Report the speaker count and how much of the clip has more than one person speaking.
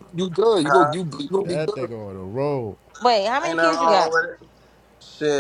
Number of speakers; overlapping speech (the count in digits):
4, about 26%